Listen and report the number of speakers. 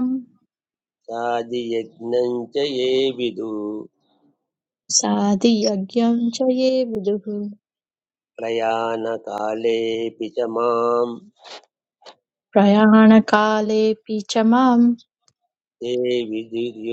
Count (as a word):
two